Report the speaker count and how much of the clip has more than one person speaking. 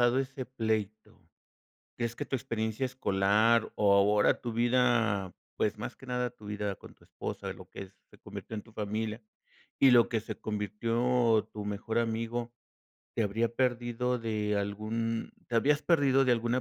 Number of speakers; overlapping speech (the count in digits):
1, no overlap